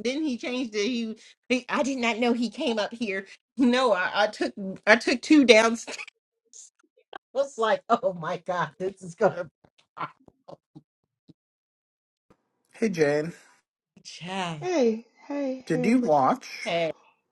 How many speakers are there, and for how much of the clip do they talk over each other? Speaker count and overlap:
3, about 3%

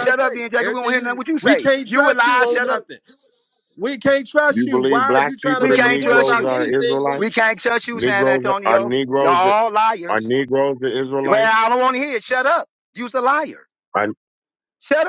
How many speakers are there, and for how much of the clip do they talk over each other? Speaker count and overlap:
3, about 51%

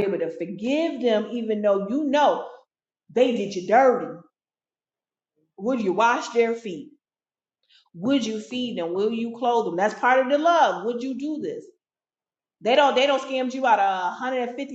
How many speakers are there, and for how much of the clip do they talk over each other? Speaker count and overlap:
1, no overlap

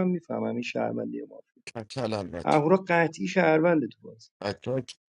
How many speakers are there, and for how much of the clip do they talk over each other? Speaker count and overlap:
2, about 3%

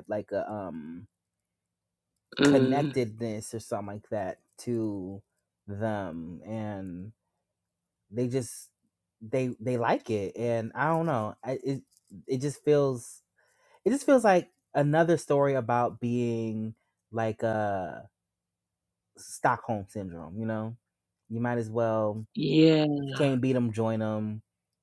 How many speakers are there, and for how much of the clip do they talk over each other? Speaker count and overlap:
2, about 2%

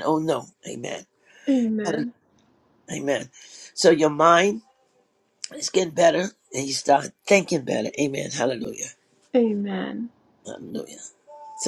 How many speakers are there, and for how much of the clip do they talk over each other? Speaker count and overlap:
2, about 2%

